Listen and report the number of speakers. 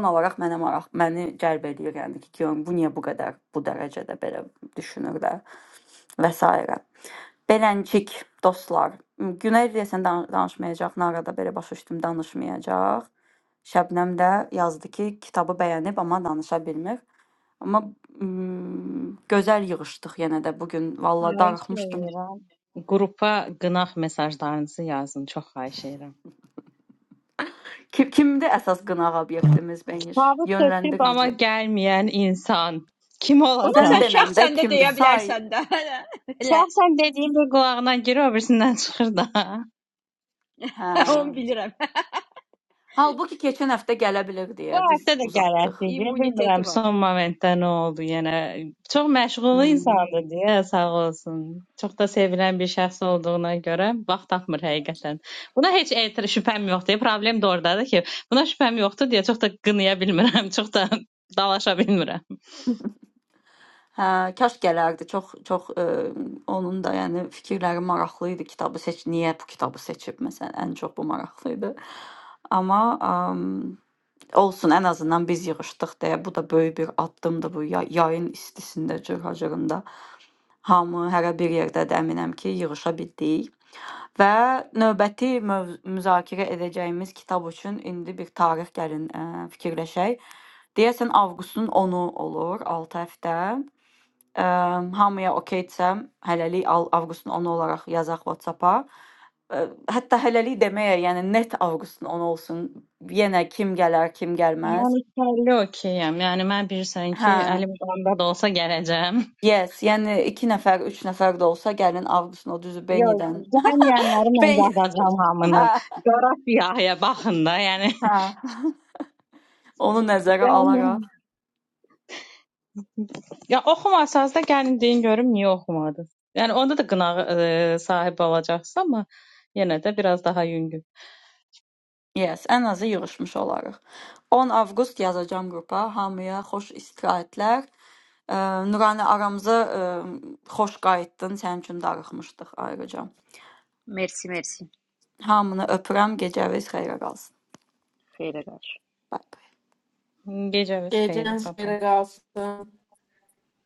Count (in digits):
4